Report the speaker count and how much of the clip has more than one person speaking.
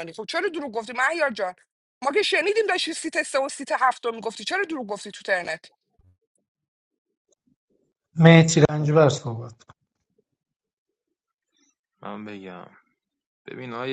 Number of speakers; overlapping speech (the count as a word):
three, no overlap